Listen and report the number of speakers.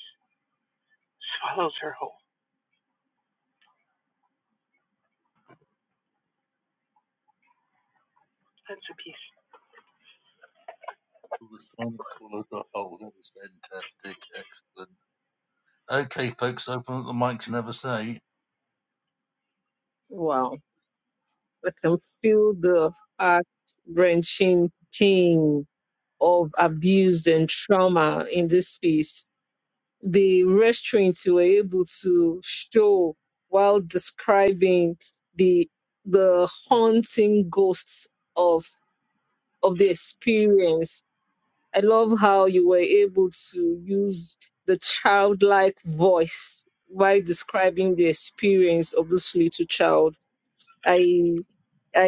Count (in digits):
3